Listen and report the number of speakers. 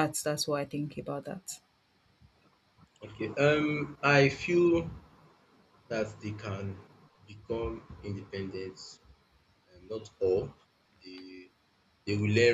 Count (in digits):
2